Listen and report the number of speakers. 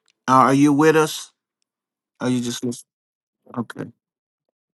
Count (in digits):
1